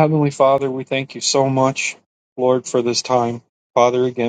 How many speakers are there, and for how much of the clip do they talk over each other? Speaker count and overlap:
1, no overlap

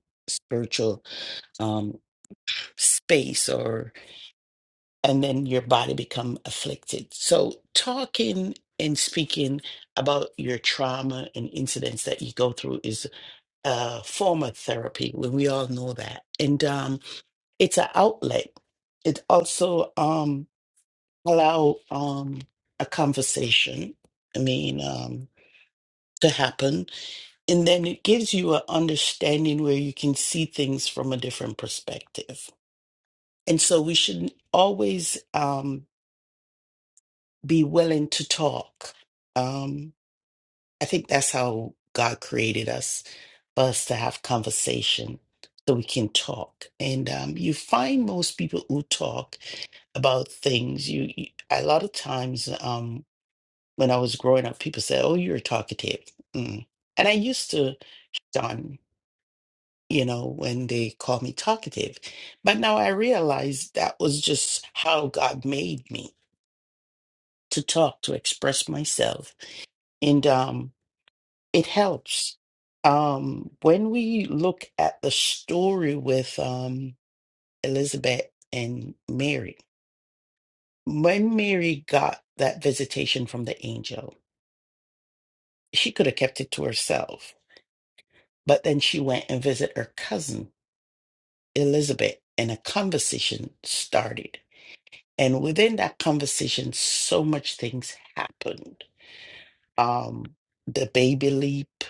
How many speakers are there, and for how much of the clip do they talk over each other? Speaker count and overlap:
1, no overlap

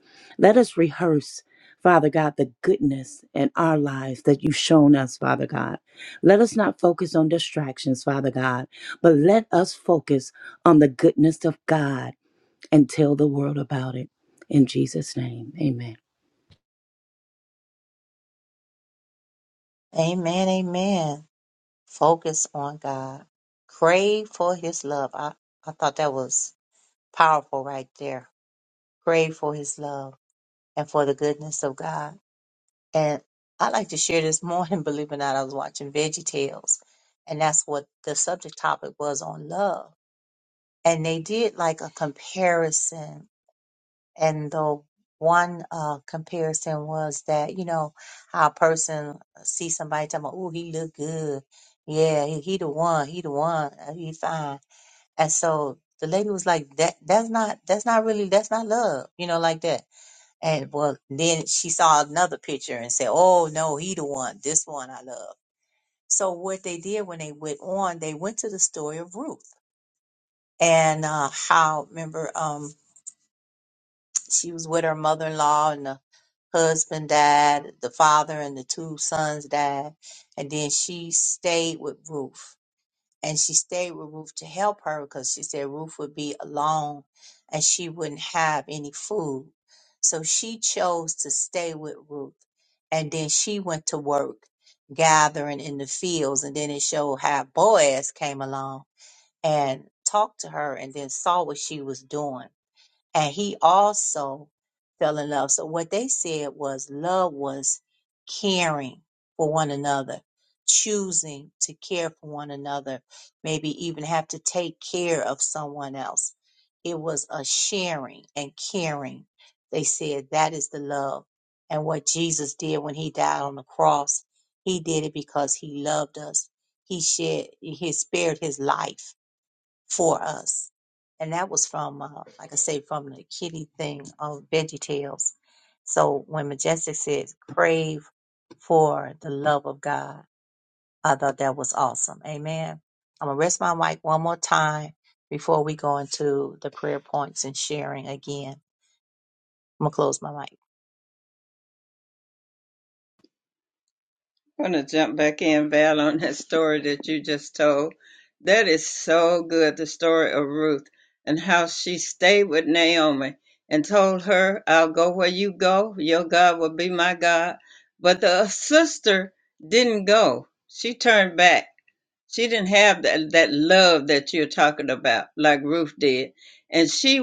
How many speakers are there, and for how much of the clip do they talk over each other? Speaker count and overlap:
3, no overlap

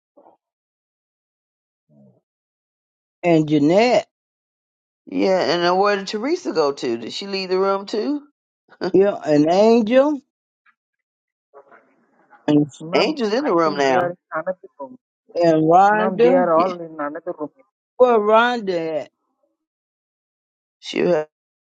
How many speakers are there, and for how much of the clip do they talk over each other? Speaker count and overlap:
3, about 9%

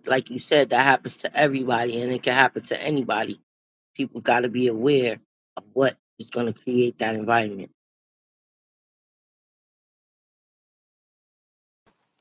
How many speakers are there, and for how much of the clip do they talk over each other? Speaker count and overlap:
1, no overlap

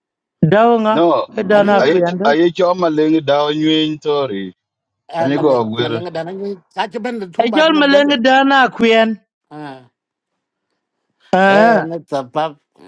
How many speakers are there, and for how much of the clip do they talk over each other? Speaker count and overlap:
3, about 22%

